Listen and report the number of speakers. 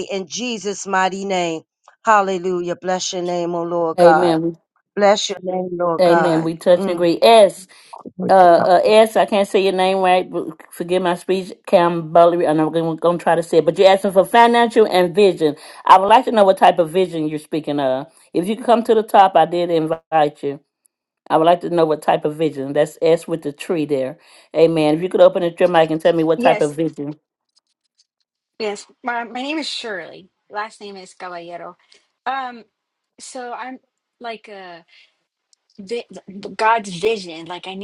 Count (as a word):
three